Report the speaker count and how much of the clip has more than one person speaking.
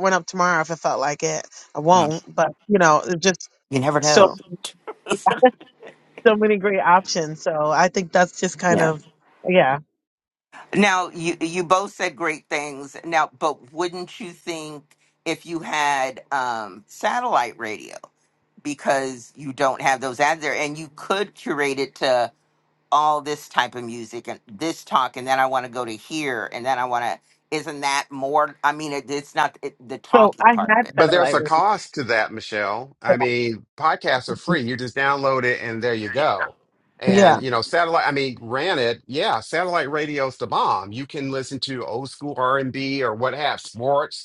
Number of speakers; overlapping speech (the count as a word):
three, about 5%